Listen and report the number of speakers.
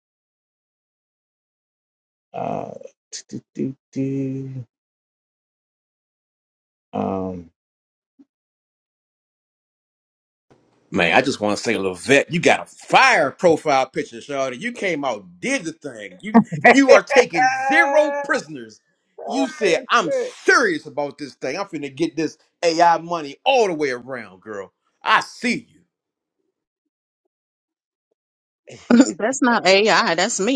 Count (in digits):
3